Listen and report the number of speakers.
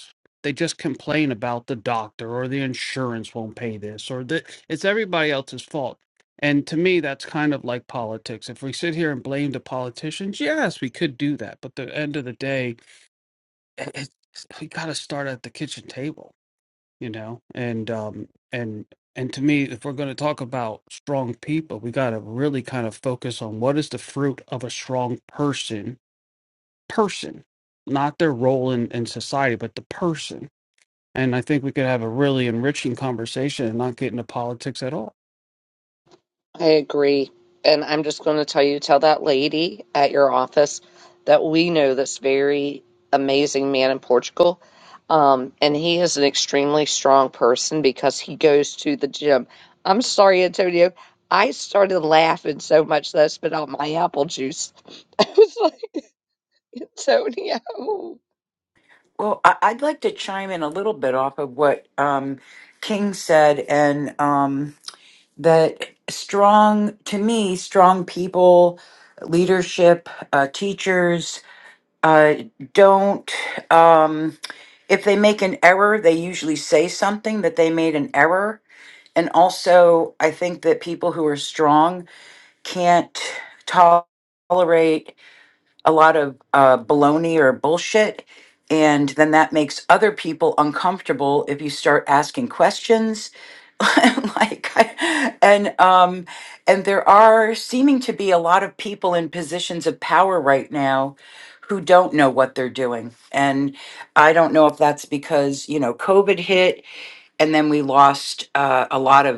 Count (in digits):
3